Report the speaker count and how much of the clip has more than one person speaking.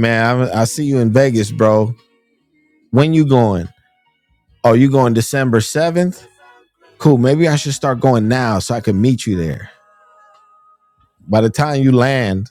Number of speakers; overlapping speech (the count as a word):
one, no overlap